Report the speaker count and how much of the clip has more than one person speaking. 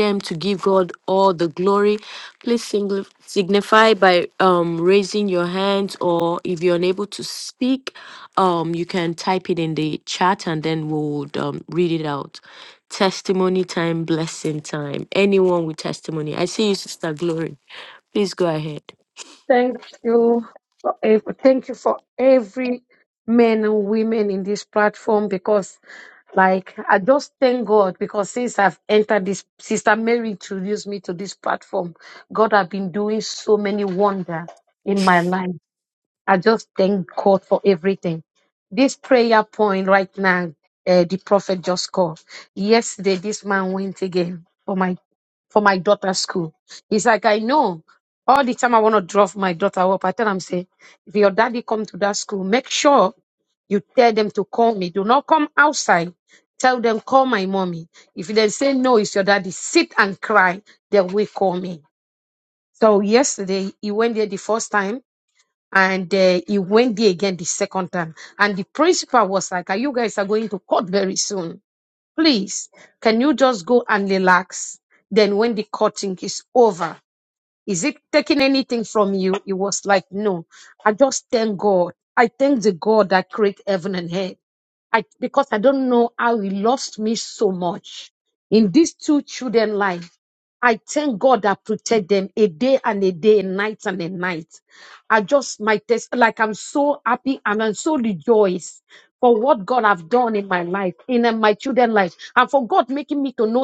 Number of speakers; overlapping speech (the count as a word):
two, no overlap